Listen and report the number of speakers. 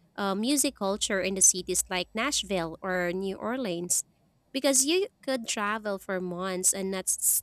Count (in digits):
1